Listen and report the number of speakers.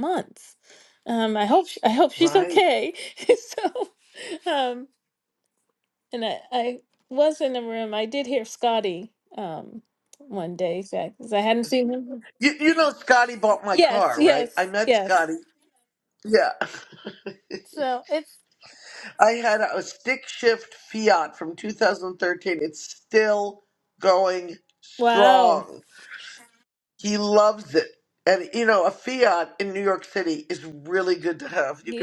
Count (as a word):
two